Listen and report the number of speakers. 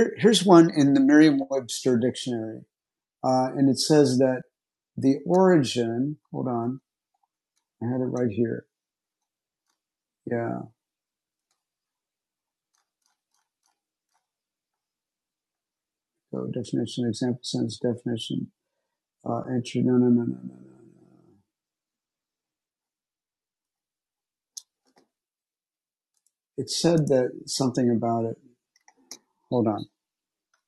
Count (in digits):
1